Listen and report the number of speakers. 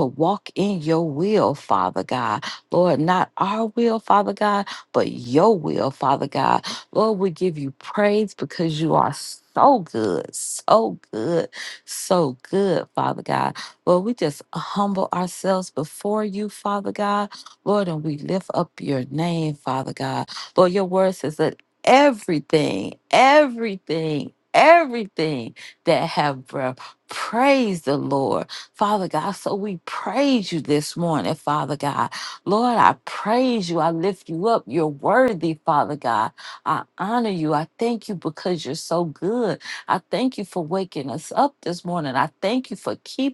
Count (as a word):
one